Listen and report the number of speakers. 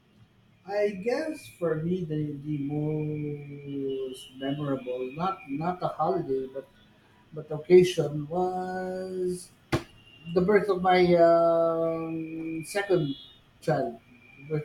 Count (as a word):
one